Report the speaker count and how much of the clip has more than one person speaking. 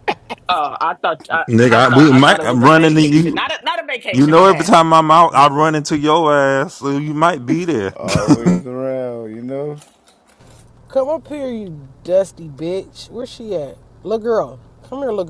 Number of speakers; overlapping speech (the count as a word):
four, about 16%